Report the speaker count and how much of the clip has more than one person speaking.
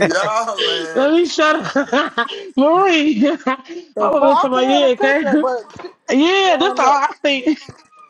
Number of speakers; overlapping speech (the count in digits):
3, about 25%